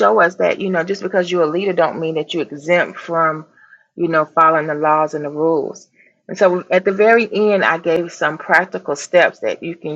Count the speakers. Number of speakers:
one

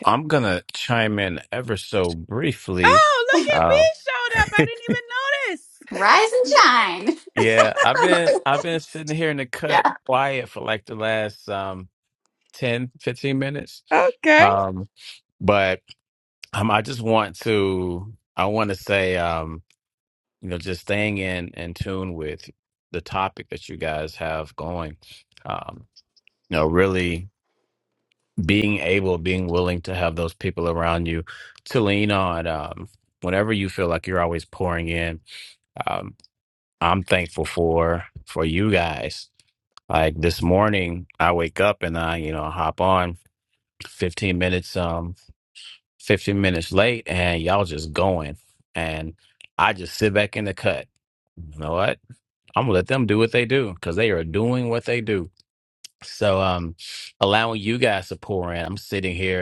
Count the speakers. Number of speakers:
three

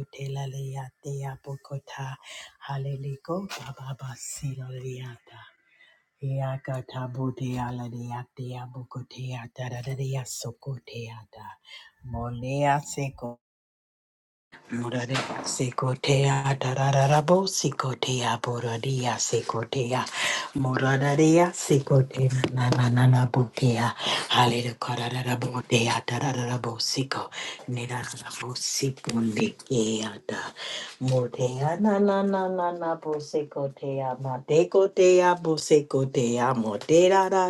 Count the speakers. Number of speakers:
one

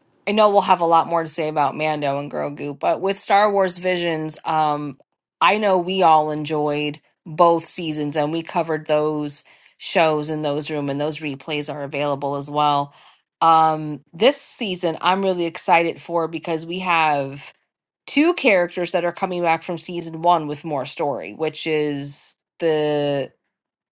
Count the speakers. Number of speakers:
one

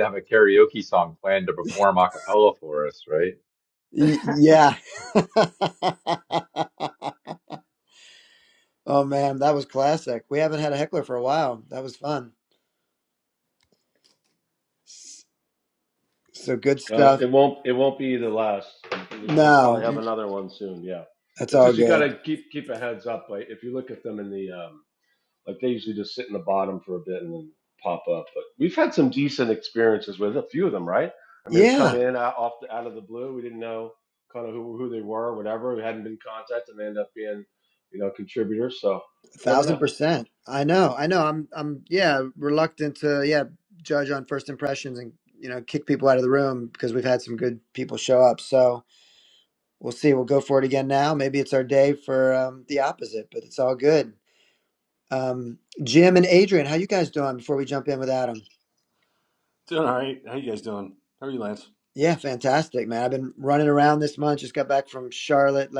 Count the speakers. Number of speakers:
four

